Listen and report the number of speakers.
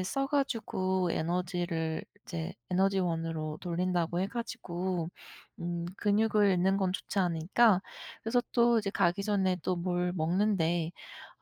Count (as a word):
one